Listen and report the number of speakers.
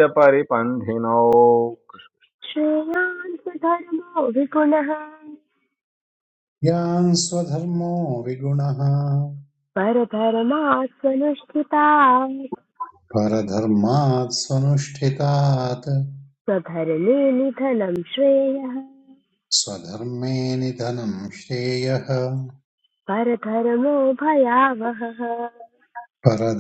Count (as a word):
three